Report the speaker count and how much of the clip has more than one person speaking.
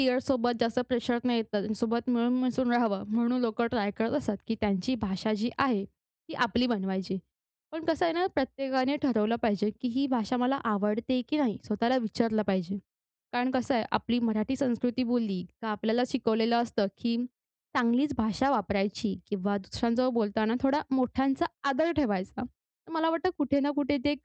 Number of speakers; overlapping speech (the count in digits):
1, no overlap